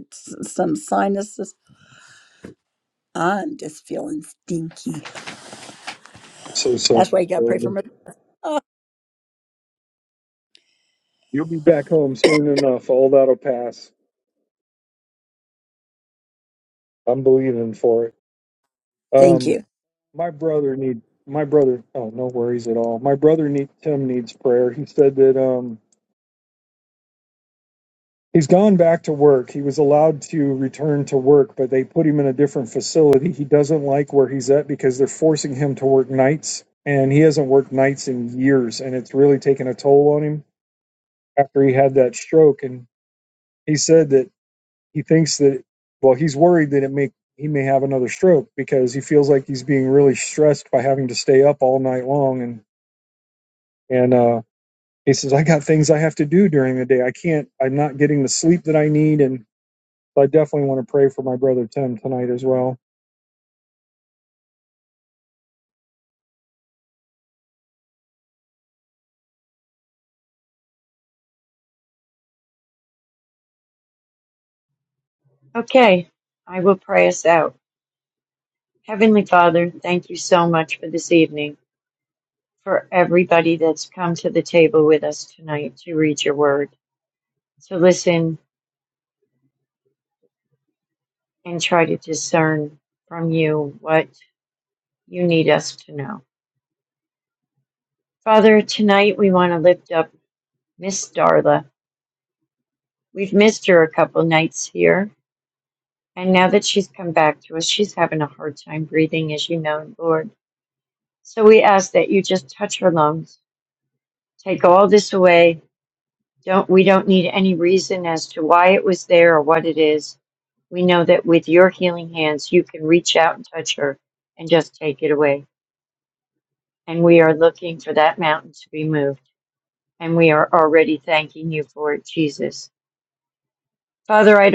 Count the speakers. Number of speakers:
3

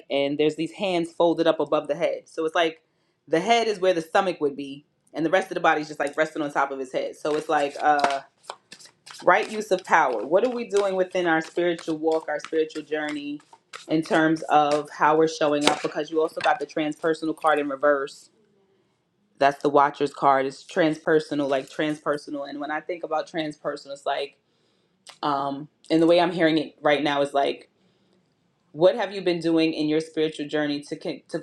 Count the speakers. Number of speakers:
1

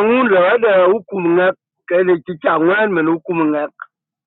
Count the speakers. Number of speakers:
1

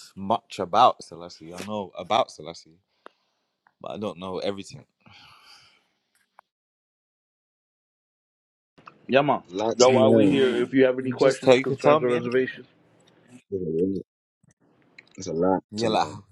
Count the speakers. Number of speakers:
3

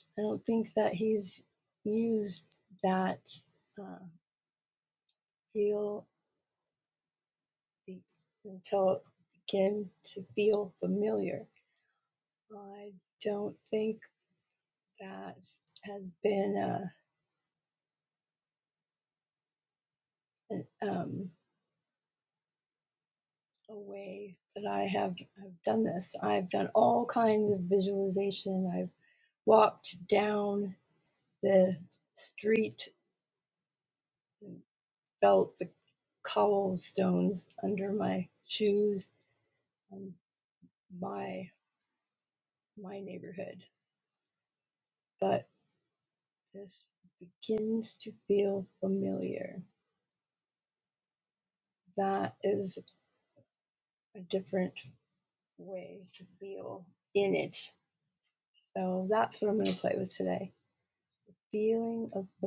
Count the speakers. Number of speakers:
1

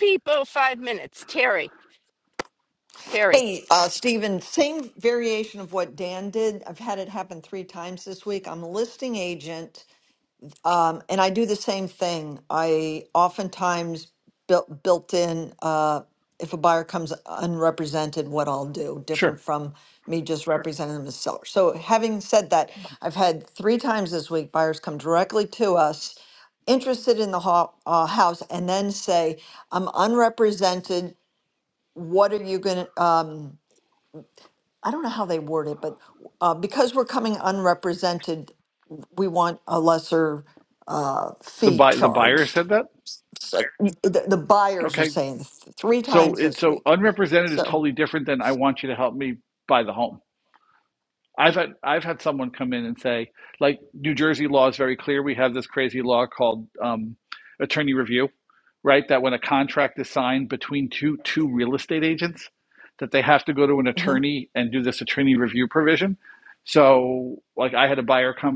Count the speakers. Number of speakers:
3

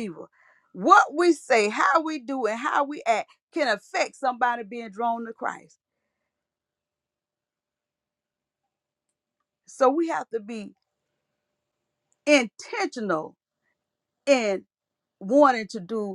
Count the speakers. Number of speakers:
1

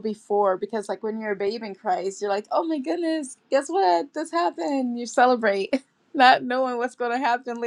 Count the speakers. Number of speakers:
1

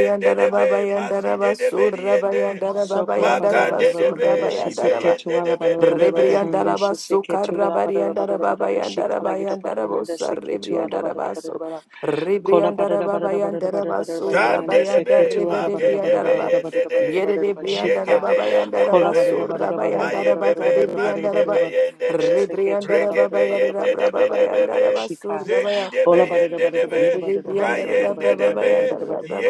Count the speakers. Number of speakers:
3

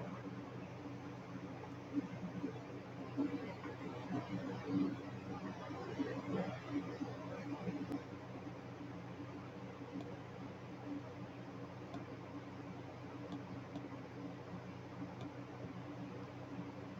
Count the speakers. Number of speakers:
0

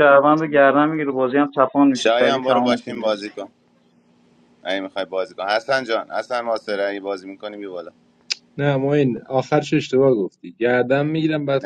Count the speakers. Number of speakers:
3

